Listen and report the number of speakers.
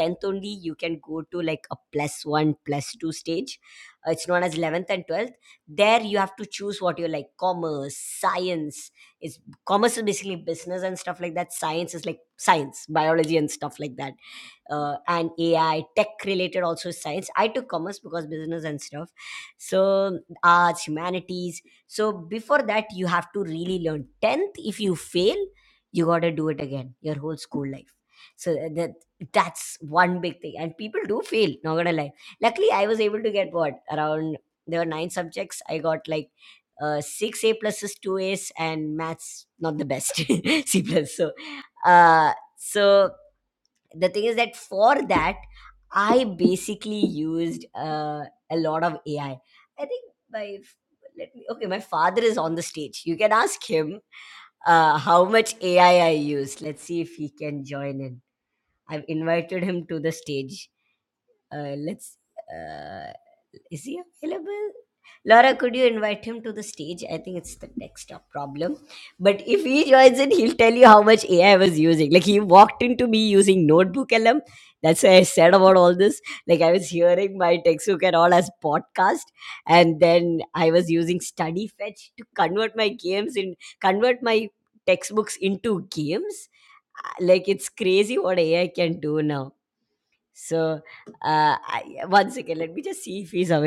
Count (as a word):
one